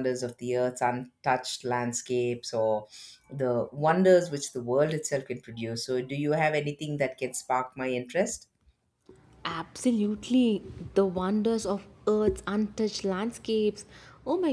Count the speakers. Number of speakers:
2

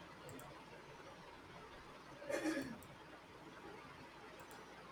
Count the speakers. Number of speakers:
0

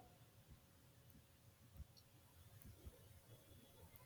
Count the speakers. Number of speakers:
0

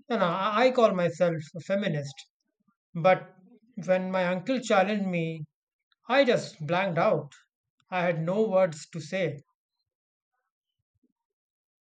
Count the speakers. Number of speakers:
1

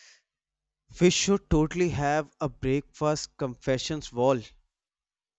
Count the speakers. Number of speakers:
1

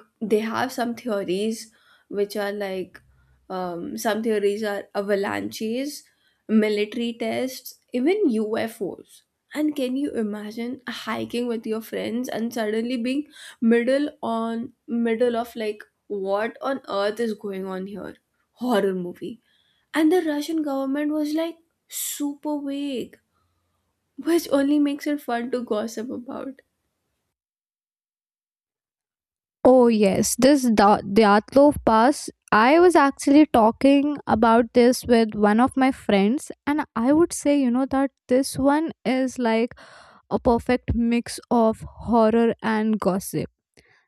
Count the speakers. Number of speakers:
2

